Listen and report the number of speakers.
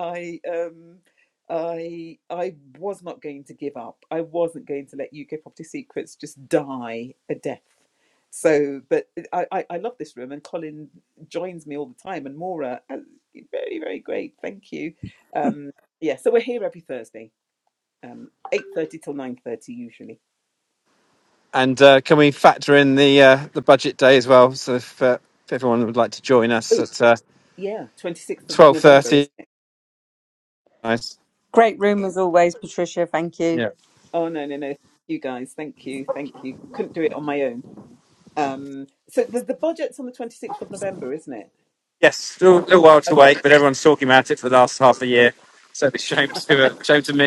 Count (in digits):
3